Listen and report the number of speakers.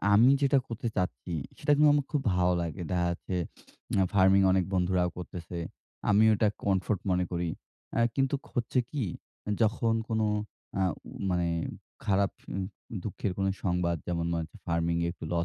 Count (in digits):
1